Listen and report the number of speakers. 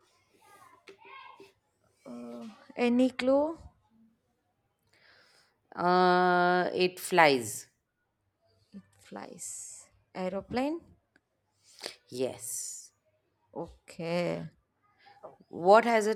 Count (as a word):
two